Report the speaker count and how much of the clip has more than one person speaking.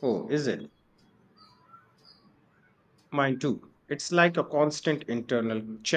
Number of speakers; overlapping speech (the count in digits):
1, no overlap